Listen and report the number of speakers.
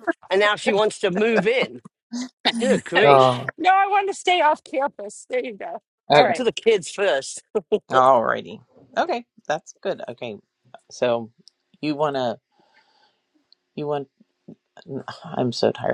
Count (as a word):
three